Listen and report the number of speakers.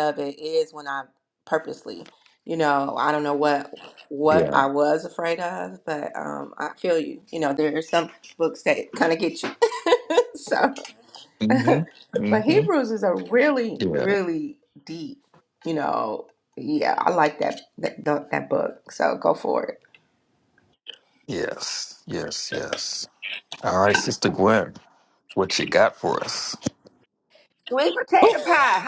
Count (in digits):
3